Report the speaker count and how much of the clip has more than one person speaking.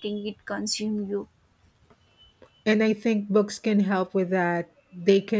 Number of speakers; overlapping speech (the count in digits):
2, no overlap